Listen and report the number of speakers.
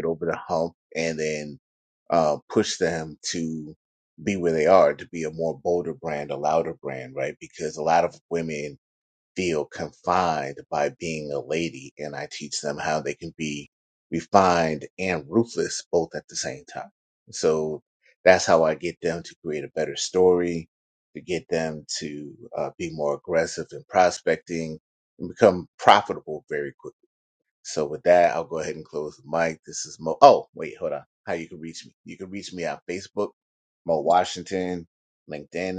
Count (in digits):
1